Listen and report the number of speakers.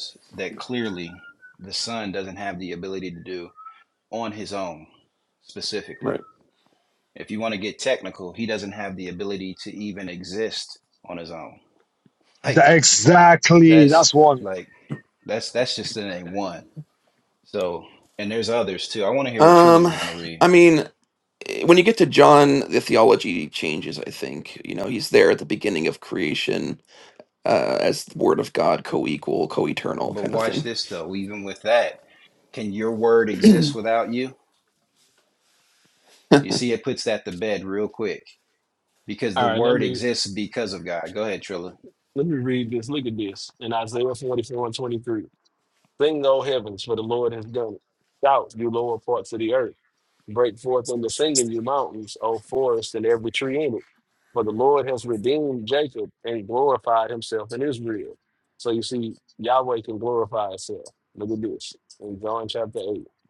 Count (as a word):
four